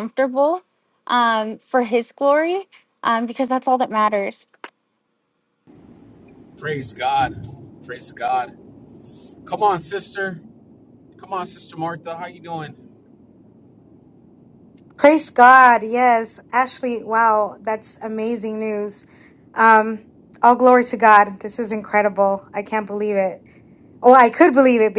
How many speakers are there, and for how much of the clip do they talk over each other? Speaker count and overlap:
three, no overlap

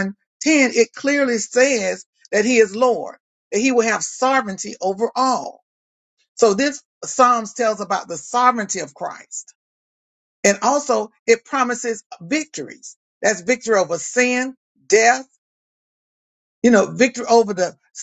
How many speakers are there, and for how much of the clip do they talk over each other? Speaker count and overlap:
one, no overlap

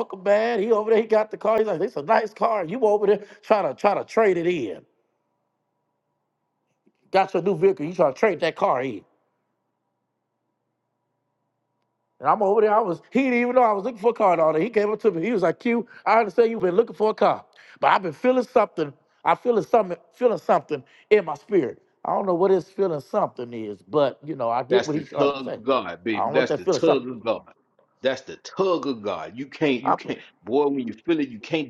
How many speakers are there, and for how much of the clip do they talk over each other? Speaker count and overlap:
two, about 6%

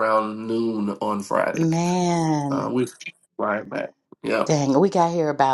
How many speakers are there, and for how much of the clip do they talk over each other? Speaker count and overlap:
two, about 6%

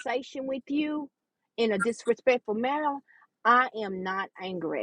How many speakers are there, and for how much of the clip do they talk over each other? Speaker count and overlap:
one, no overlap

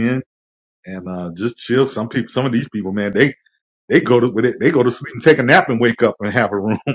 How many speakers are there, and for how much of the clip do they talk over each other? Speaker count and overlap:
one, no overlap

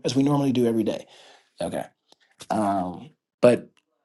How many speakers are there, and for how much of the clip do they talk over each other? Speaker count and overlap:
one, no overlap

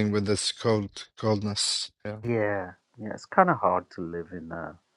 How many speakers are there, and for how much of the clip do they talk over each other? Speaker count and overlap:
two, no overlap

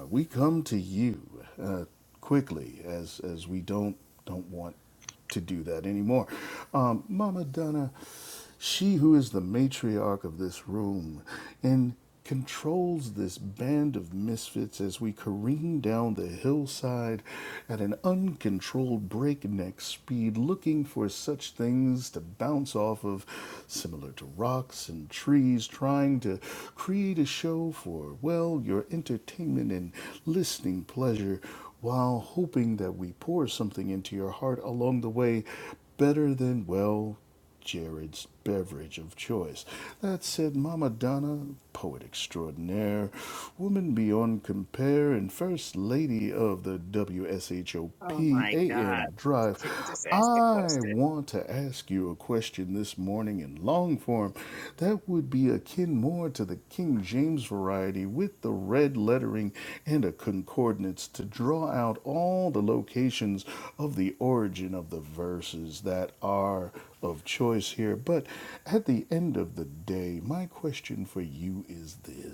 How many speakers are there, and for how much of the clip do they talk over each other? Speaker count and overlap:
two, about 2%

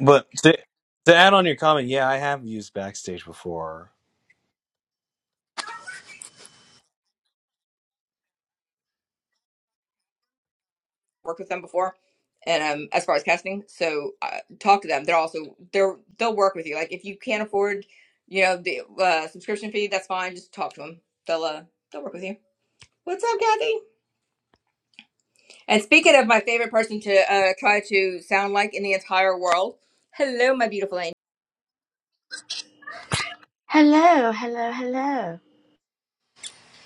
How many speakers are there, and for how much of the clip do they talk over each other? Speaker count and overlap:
three, no overlap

